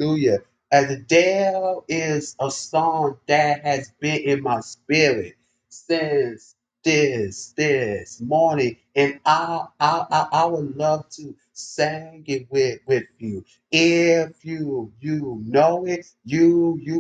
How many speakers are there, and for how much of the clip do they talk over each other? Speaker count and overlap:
one, no overlap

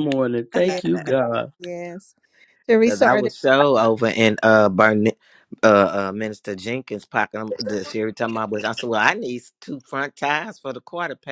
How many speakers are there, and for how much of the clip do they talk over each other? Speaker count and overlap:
three, about 5%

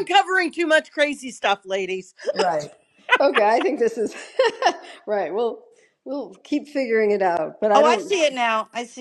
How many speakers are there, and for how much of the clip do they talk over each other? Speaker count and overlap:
three, about 4%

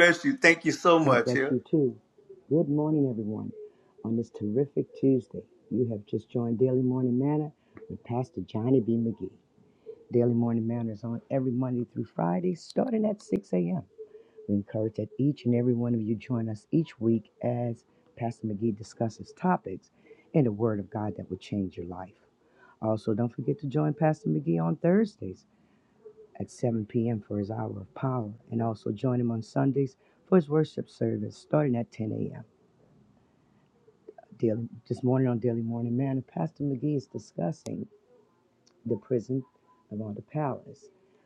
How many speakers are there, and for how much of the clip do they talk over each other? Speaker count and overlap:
two, about 1%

